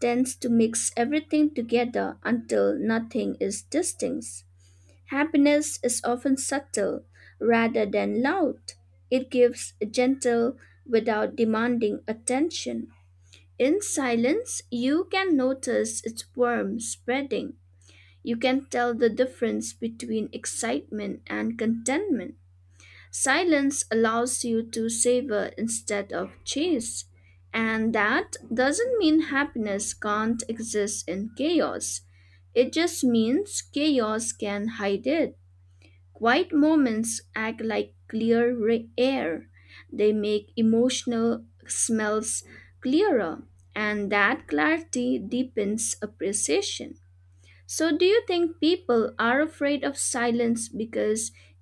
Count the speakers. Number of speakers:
1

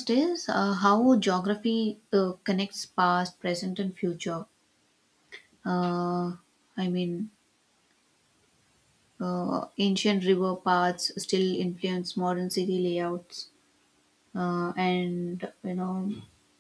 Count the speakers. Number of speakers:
1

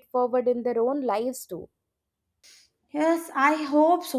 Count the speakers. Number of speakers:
2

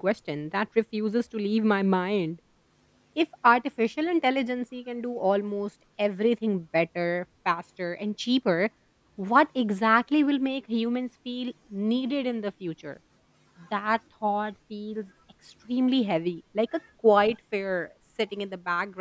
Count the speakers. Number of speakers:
1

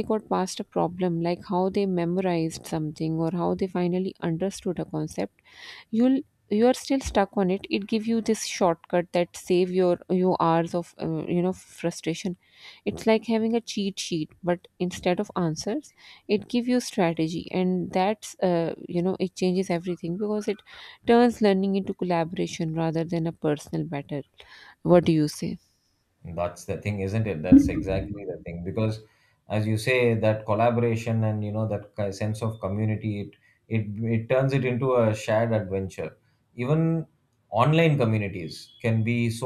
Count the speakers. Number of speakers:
2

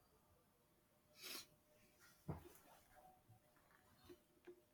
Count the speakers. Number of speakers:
0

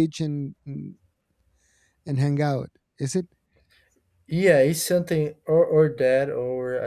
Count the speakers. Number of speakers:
2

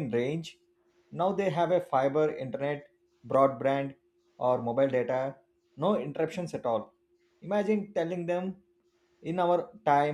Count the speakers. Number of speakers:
1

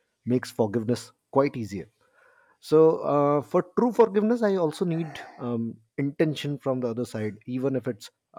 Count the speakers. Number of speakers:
1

